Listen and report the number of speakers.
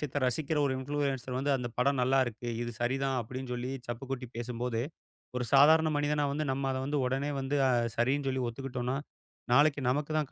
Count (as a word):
one